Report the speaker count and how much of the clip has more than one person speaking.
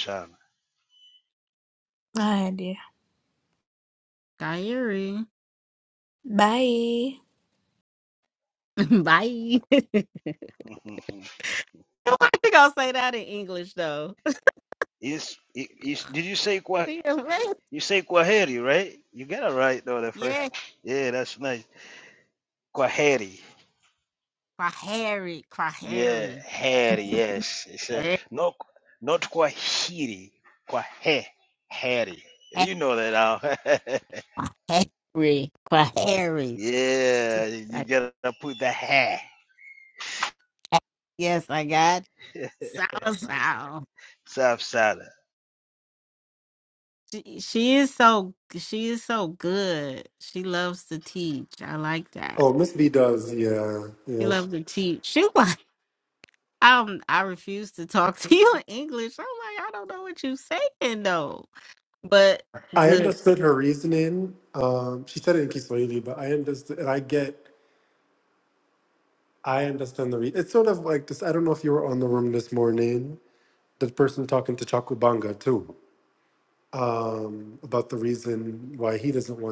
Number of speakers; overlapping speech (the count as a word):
four, about 2%